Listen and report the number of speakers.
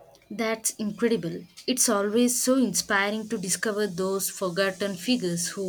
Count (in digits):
1